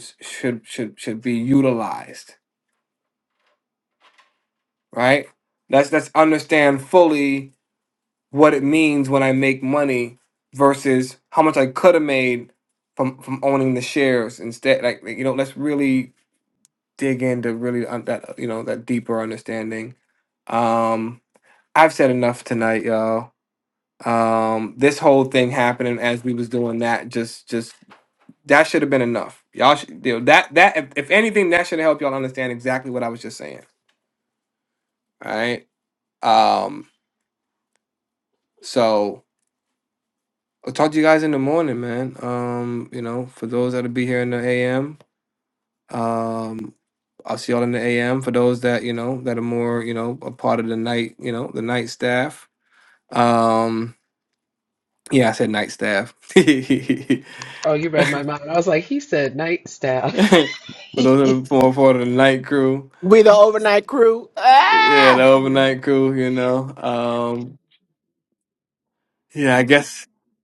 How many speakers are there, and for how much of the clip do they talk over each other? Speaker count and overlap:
three, about 2%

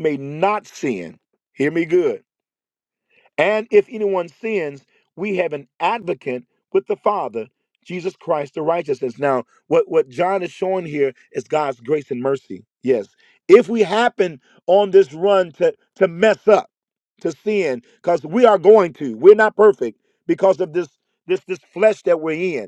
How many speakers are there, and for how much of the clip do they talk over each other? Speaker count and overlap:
one, no overlap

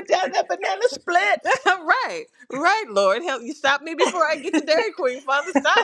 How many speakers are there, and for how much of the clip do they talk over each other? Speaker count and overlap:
two, about 1%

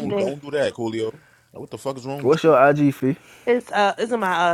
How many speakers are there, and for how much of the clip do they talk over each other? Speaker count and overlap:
three, about 11%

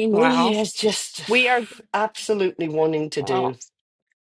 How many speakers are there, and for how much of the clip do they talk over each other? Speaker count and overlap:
two, about 17%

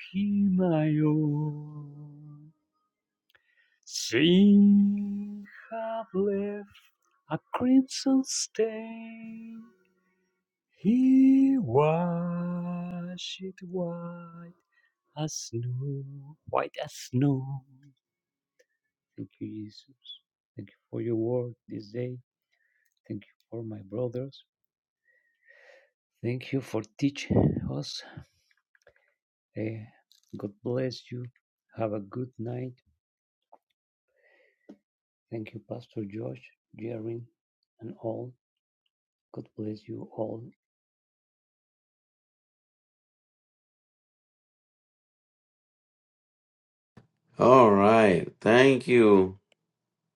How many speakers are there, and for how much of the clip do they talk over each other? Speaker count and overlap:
two, no overlap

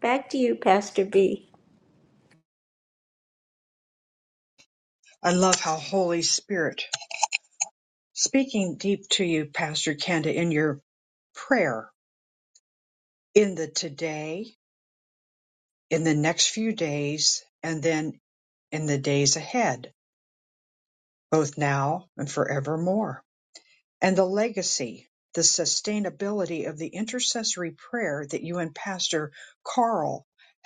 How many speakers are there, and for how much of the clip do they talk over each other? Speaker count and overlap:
two, no overlap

